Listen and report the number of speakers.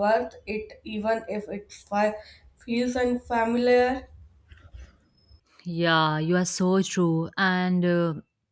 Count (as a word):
two